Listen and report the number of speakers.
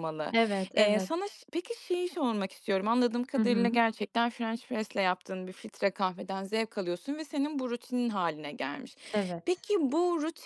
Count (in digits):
2